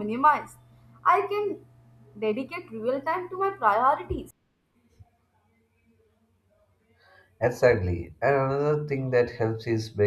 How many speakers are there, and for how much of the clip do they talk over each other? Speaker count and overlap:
two, no overlap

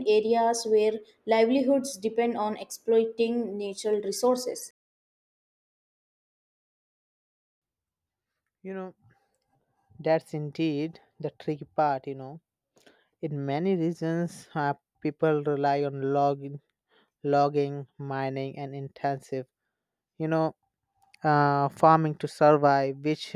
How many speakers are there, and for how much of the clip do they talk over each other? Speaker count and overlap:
two, no overlap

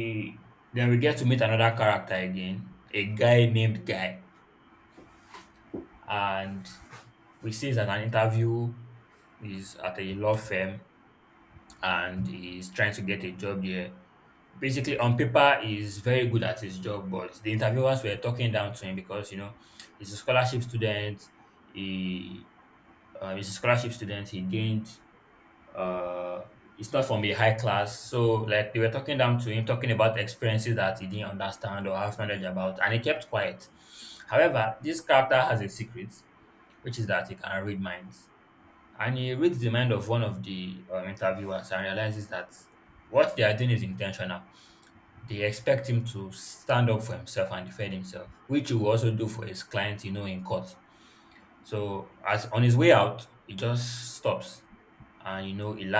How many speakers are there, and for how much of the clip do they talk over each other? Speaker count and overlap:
one, no overlap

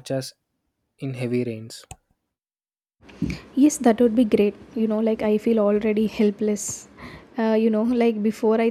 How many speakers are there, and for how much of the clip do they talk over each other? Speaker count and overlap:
two, no overlap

